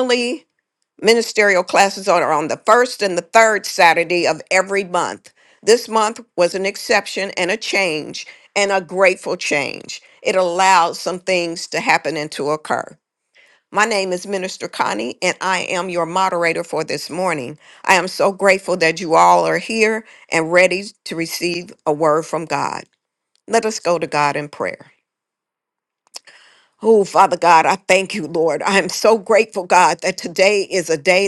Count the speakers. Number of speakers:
1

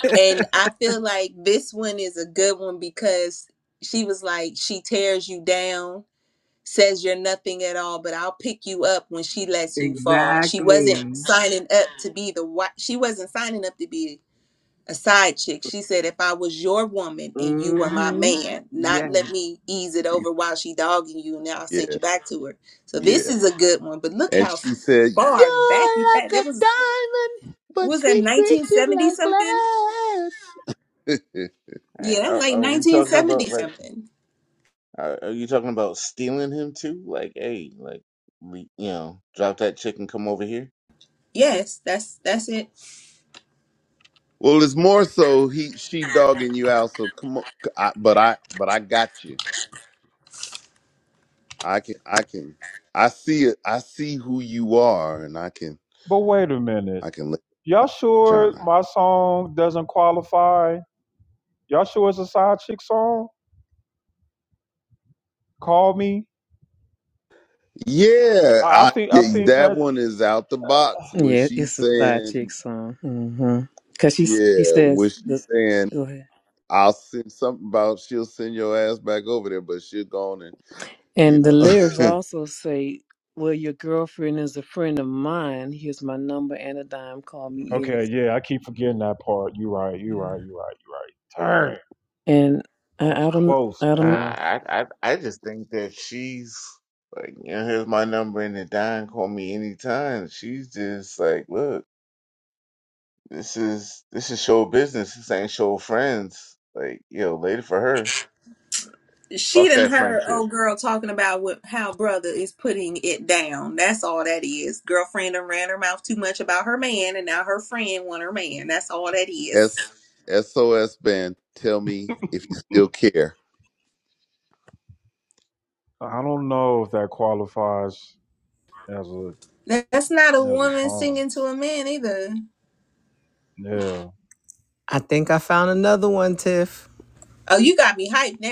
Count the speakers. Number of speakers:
6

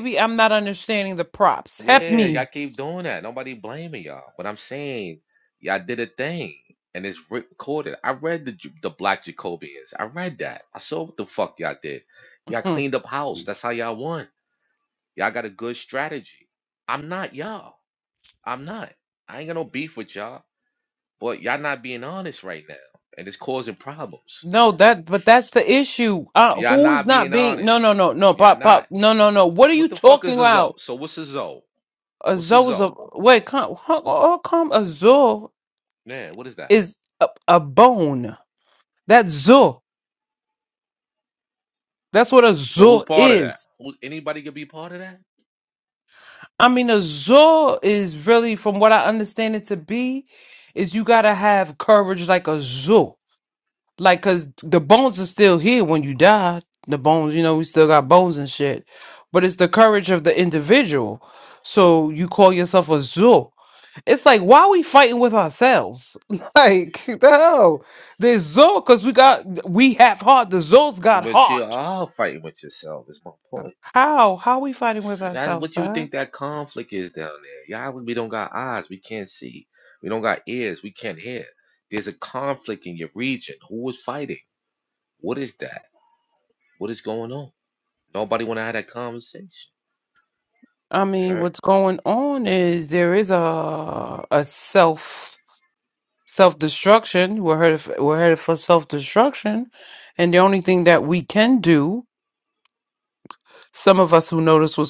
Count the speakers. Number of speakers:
2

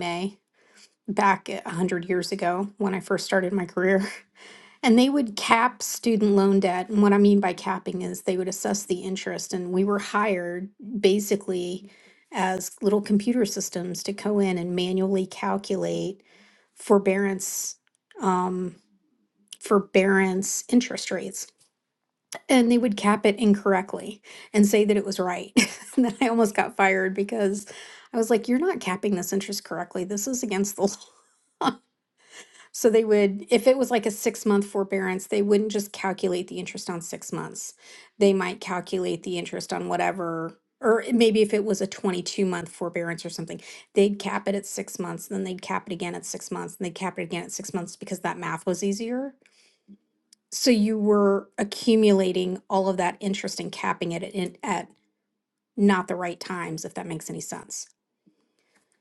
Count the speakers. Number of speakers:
1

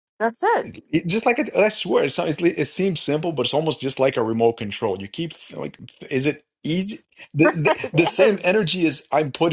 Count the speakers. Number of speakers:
2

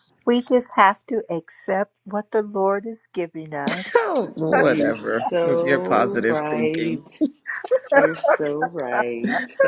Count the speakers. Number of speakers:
3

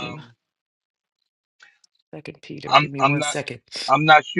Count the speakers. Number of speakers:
2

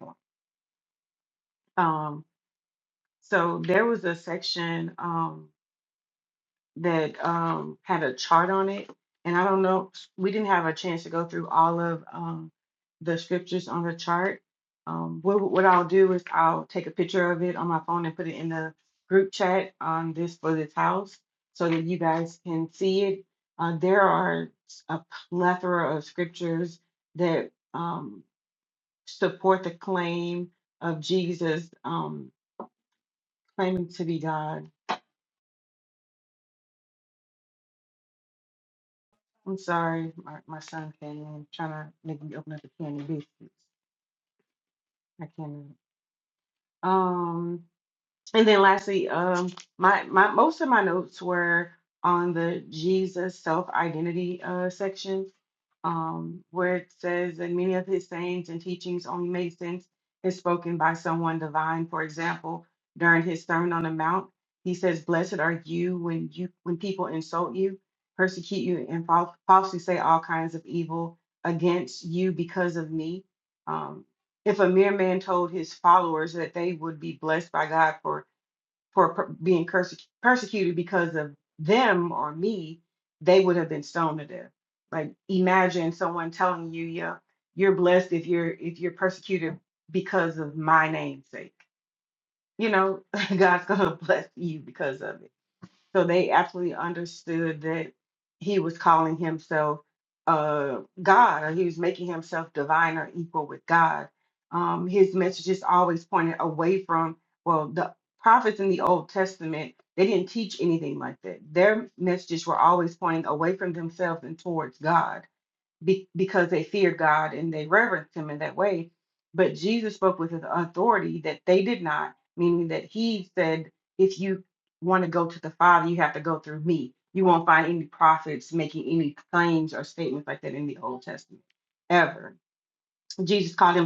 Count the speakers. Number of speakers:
1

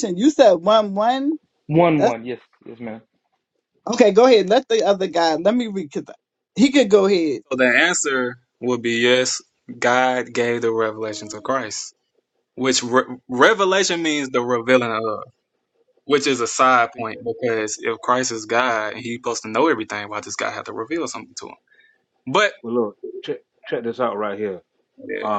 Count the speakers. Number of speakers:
4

